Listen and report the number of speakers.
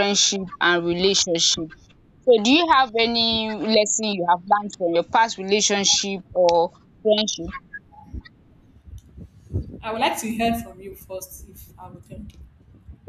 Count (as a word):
two